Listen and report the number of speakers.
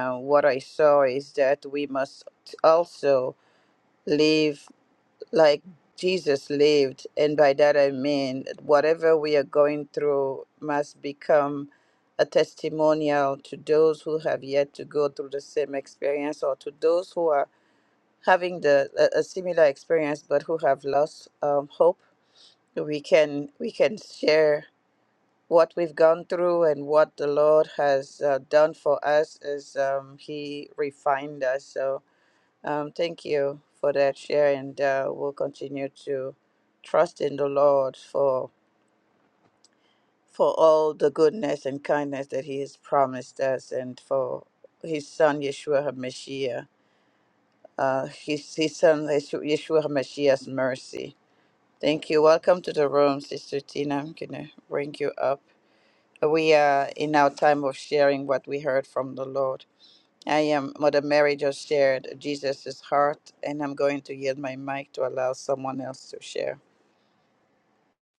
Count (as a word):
one